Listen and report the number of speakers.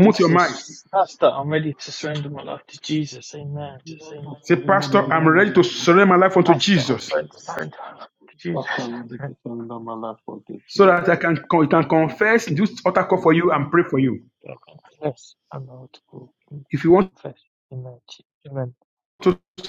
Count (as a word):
three